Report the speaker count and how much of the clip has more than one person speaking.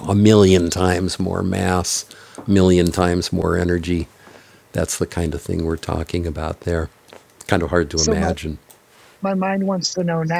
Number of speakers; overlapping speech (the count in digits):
2, about 4%